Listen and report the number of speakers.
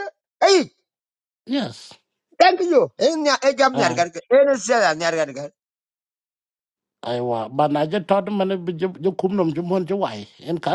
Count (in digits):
2